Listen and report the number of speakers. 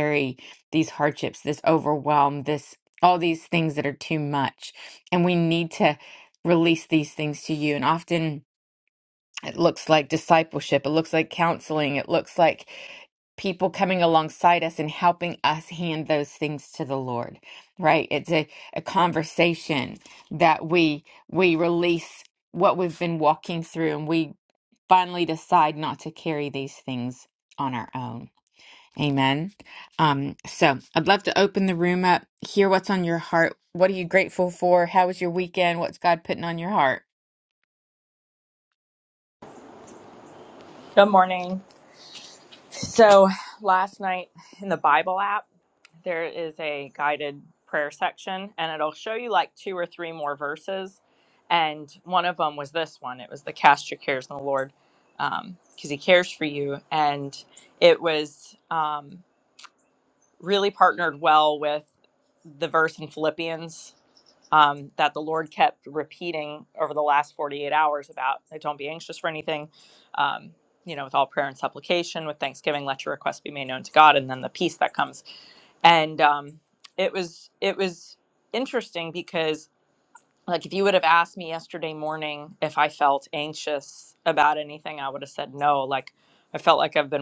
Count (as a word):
two